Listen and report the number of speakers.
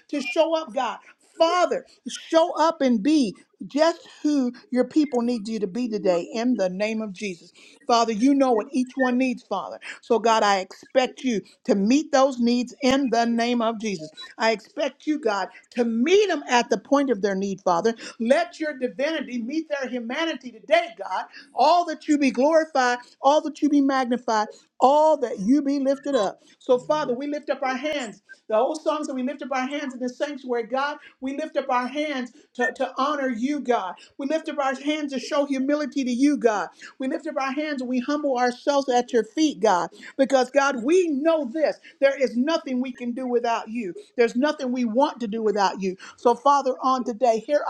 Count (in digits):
1